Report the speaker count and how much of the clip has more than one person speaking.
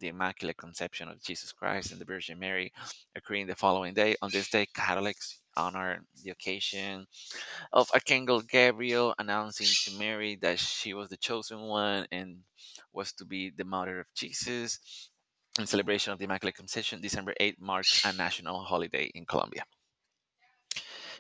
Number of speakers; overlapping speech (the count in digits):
1, no overlap